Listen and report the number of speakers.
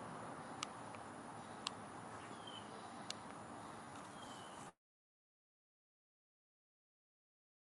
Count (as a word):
zero